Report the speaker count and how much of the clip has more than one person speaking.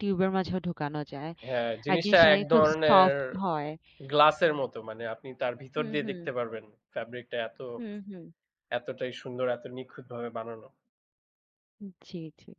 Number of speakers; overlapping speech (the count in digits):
2, about 14%